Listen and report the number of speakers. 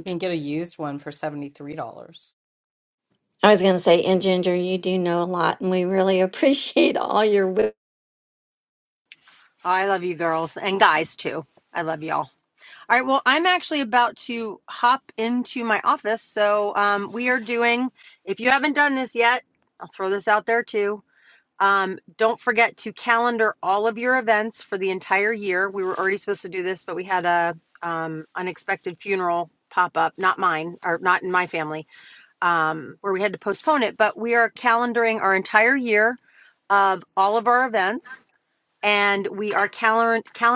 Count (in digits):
3